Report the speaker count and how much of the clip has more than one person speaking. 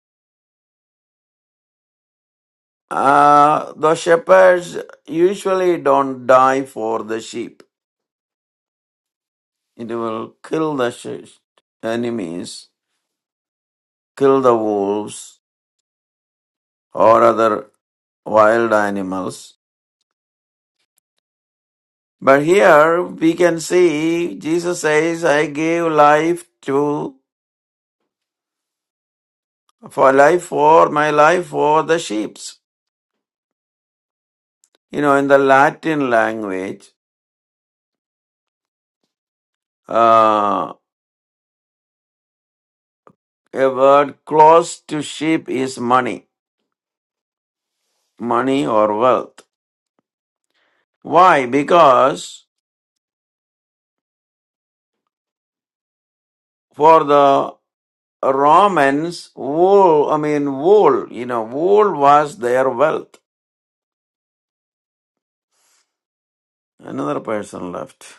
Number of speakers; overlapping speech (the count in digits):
1, no overlap